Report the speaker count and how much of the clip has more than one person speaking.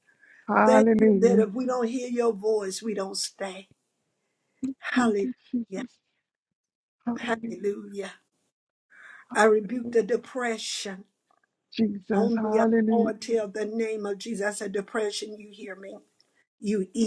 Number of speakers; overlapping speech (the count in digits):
2, about 16%